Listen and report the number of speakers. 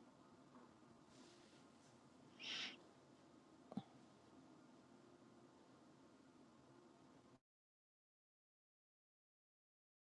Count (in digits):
0